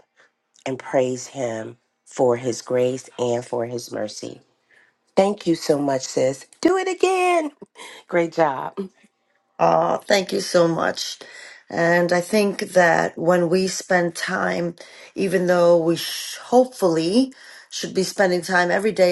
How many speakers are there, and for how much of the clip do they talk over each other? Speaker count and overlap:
two, no overlap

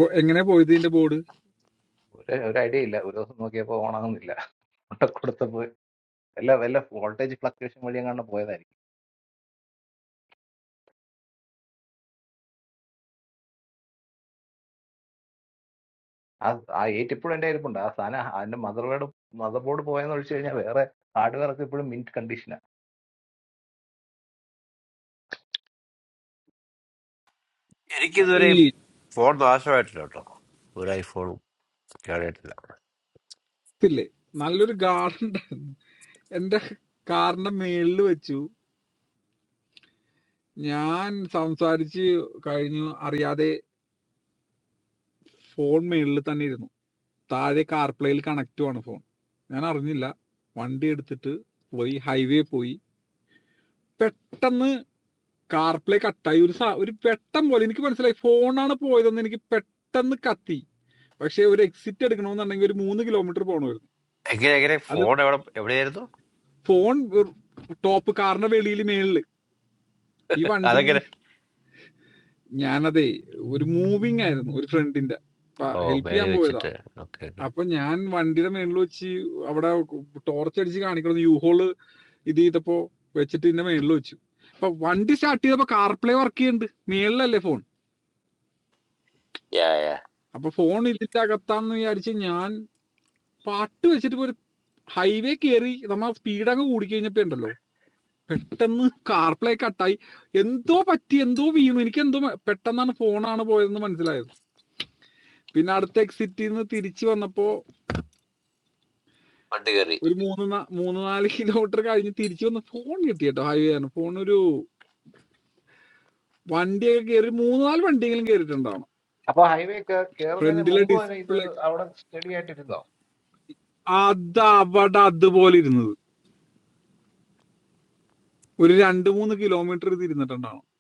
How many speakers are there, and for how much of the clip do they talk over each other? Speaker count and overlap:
three, about 2%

